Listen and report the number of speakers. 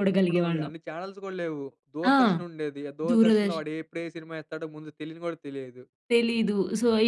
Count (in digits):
2